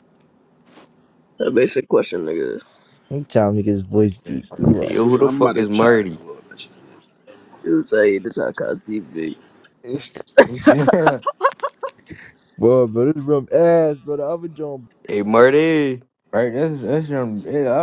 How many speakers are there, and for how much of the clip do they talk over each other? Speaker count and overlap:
five, about 10%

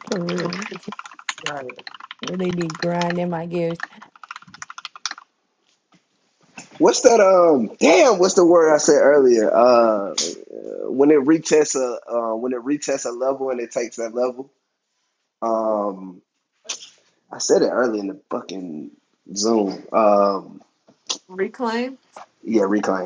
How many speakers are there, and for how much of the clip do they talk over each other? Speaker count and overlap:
three, no overlap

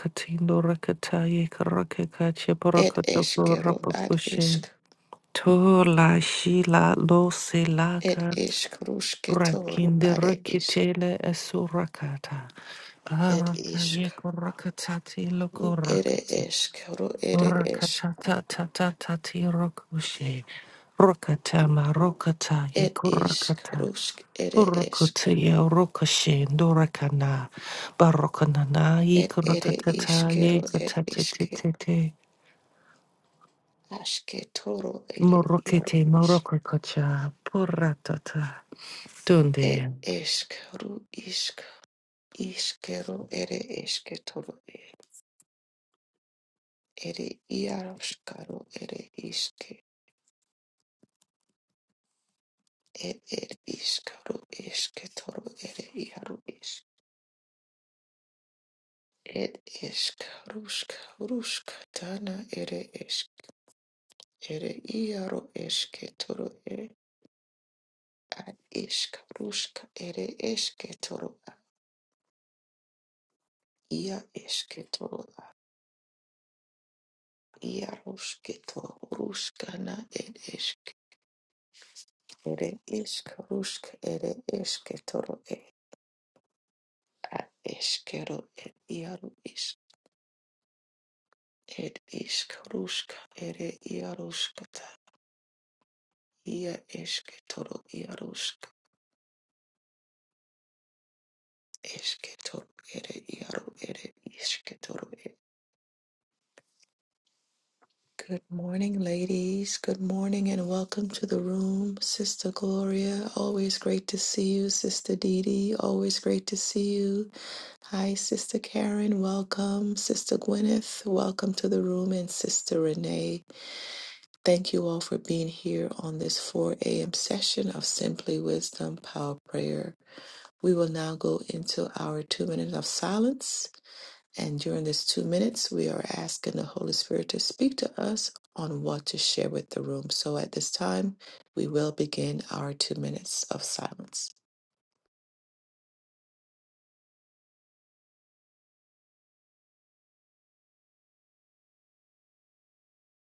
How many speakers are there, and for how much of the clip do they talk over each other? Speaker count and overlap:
two, about 8%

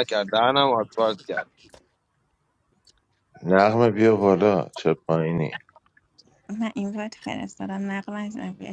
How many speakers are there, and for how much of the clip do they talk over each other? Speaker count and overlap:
three, no overlap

